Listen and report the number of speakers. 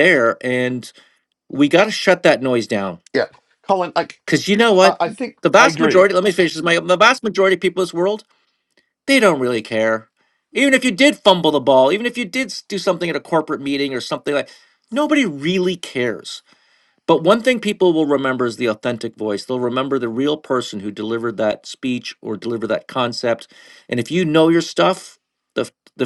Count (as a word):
two